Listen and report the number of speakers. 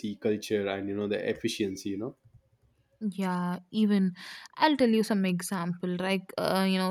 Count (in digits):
2